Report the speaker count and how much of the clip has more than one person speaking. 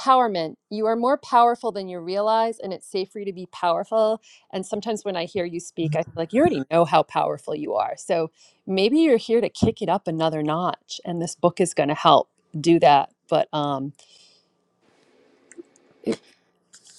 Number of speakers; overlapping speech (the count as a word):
one, no overlap